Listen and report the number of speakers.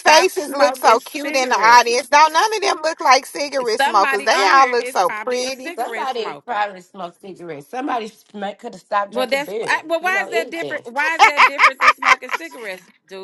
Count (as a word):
three